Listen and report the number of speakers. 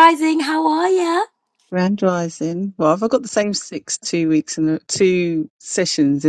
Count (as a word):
two